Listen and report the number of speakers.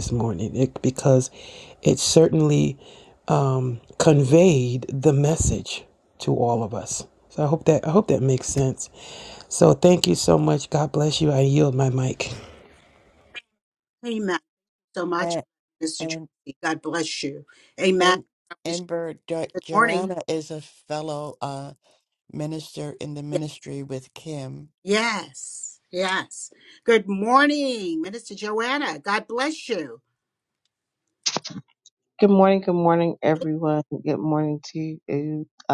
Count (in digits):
4